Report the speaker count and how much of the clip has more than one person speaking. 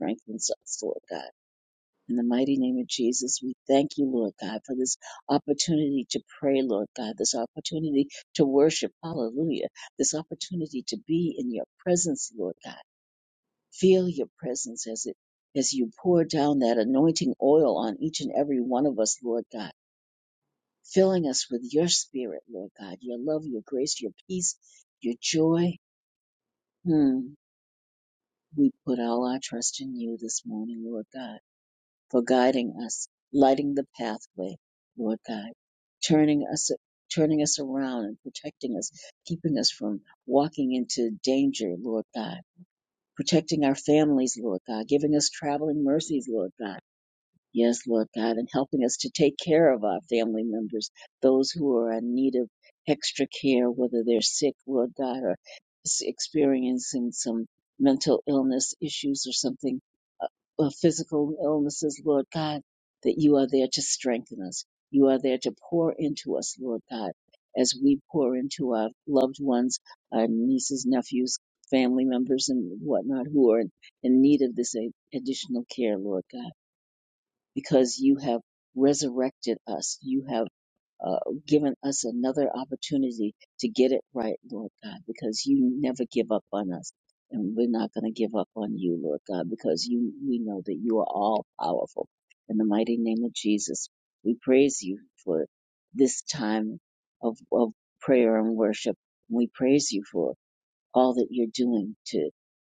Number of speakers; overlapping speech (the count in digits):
1, no overlap